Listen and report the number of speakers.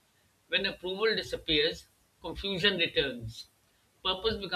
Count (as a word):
one